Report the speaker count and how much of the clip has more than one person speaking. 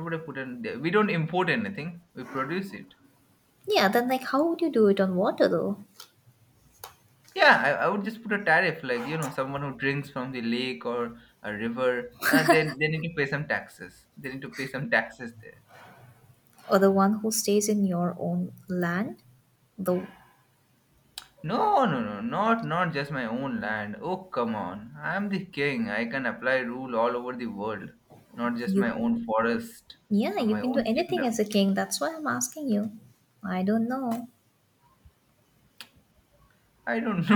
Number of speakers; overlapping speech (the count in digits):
2, about 3%